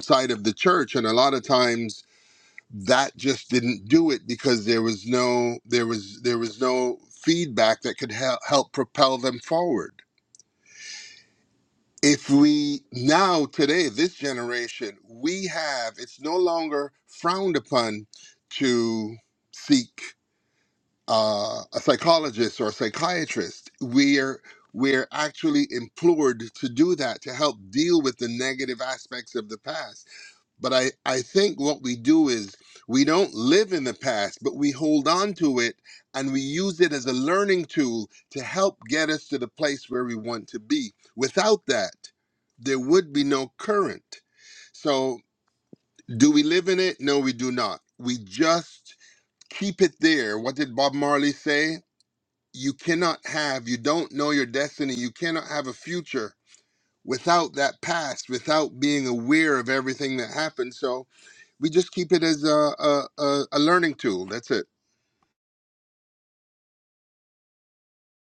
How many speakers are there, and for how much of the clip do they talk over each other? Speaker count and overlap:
1, no overlap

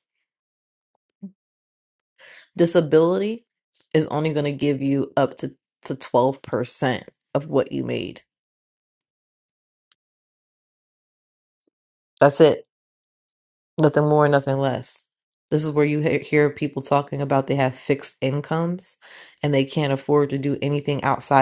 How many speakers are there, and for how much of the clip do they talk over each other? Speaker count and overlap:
1, no overlap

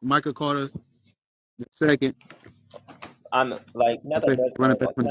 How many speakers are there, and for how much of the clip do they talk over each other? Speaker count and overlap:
2, about 19%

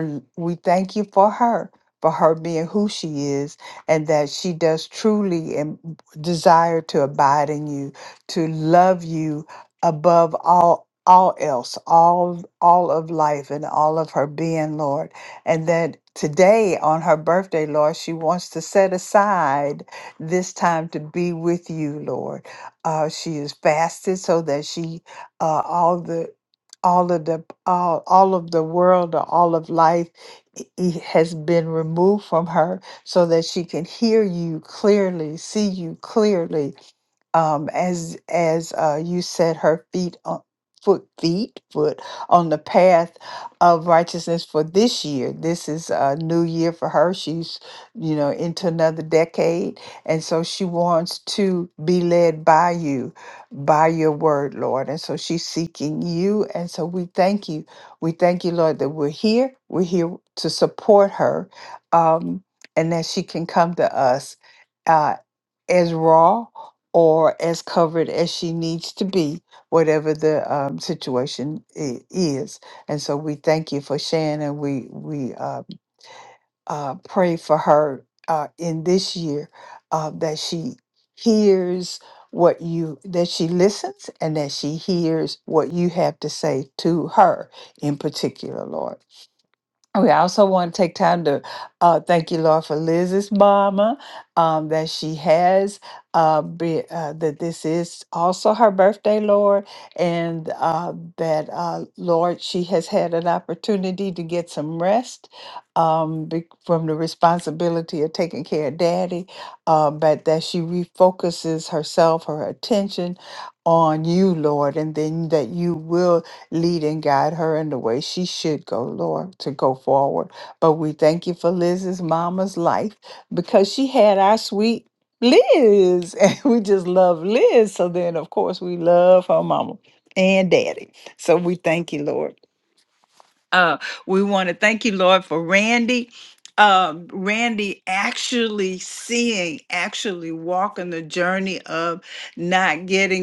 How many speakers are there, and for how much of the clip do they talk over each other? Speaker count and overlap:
1, no overlap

